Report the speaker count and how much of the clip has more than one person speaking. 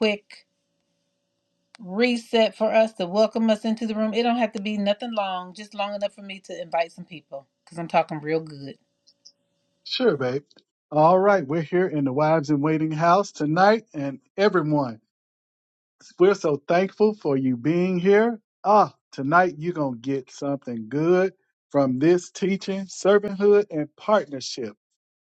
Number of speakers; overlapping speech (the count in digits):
2, no overlap